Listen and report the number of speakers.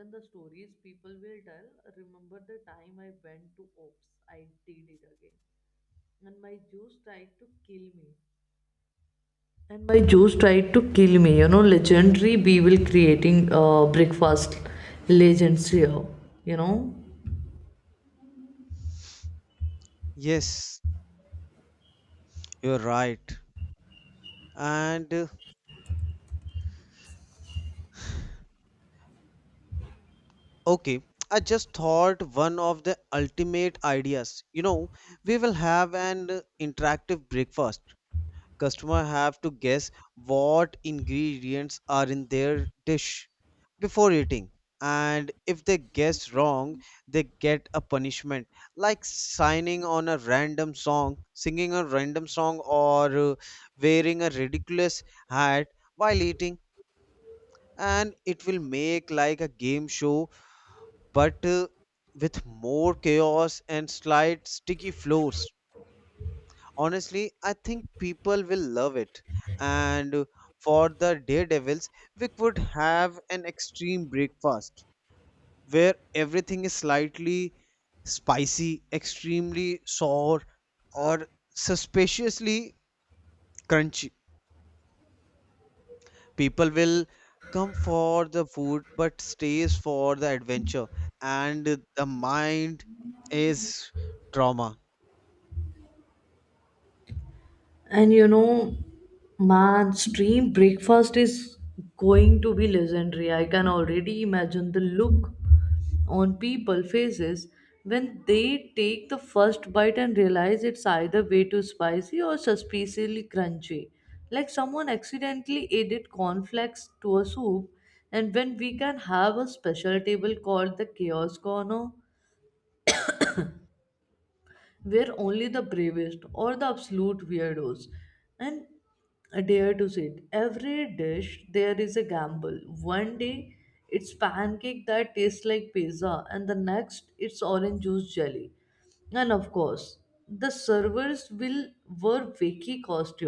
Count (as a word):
two